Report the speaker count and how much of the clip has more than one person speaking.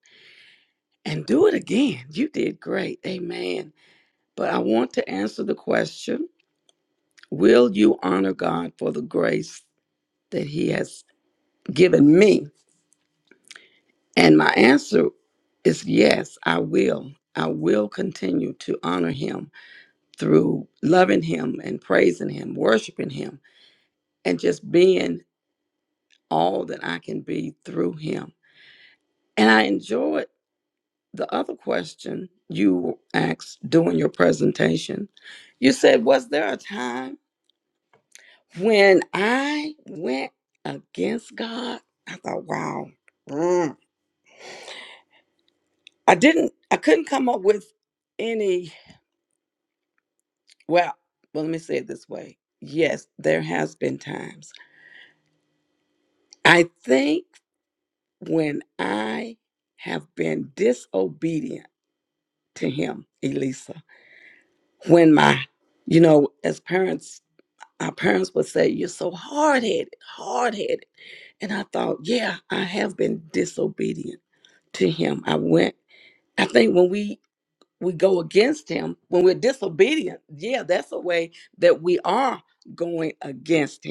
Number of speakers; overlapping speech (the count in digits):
1, no overlap